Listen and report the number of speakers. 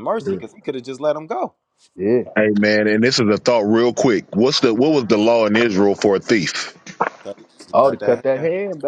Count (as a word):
three